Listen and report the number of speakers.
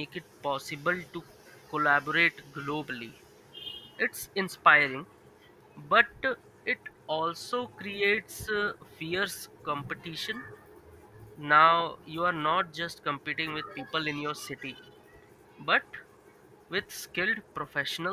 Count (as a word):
one